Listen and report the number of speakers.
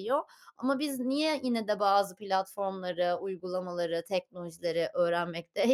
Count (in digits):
1